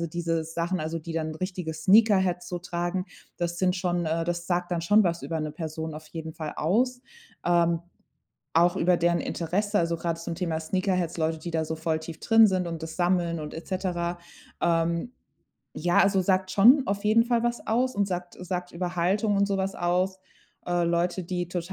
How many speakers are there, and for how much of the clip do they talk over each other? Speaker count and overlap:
one, no overlap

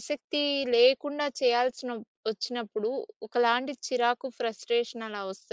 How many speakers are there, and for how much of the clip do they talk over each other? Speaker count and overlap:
one, no overlap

